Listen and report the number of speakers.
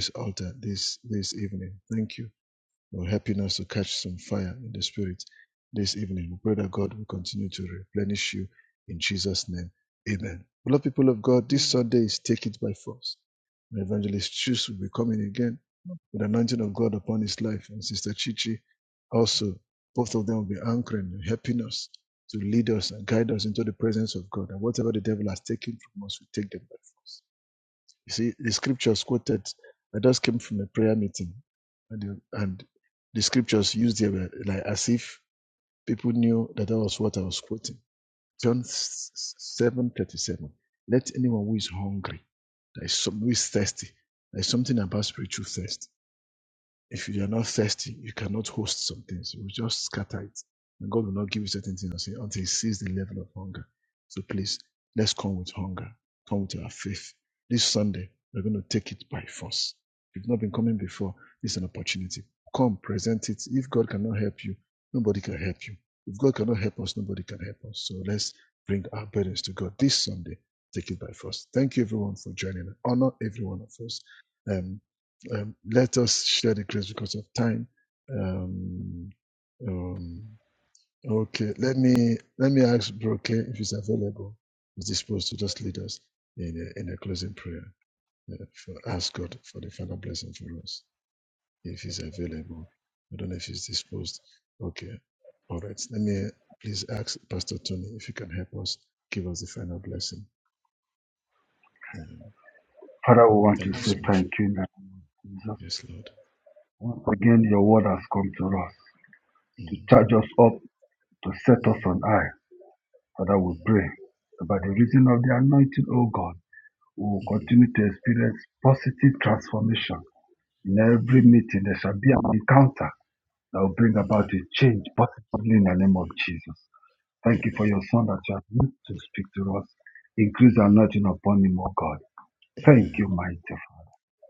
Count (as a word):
two